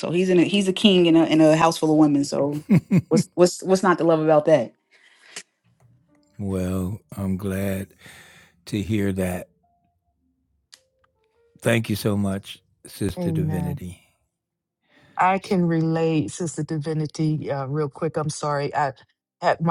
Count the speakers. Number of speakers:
3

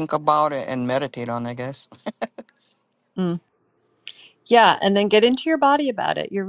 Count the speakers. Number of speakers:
2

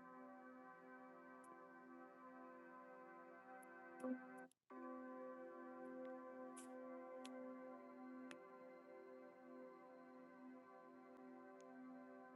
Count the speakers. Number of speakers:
0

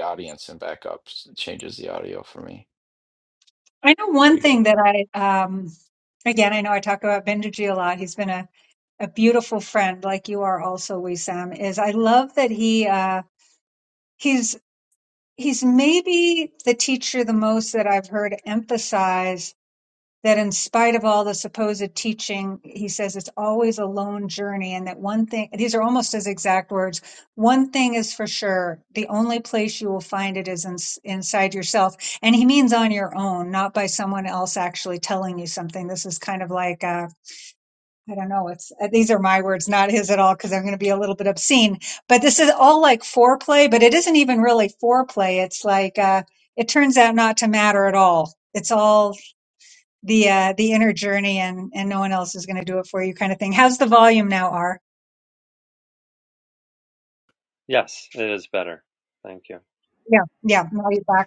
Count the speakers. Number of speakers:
3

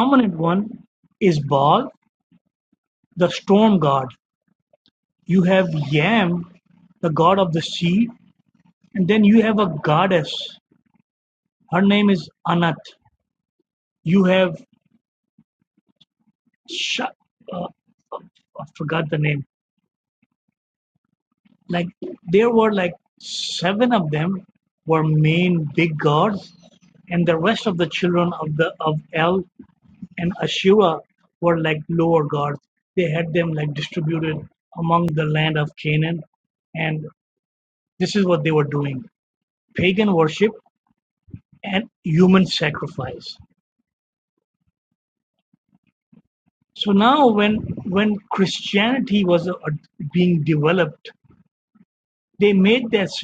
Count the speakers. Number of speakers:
1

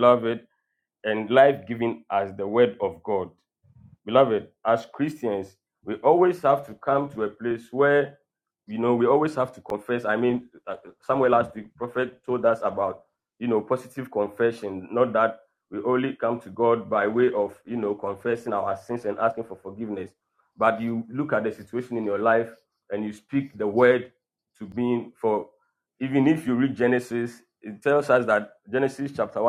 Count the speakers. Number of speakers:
1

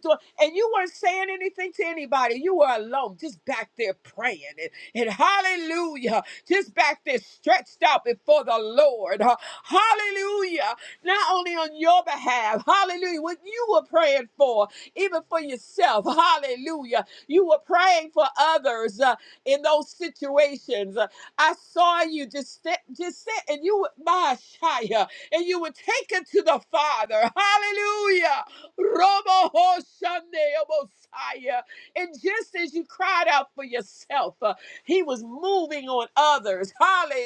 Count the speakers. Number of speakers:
1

